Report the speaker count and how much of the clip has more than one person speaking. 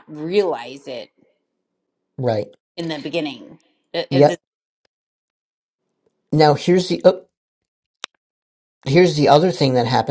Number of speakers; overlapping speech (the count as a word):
two, about 2%